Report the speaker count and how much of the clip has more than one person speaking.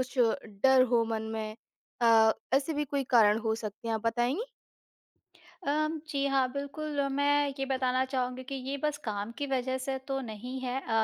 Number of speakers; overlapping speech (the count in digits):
2, no overlap